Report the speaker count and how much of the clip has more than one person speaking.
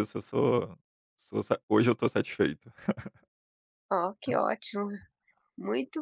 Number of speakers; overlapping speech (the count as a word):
two, no overlap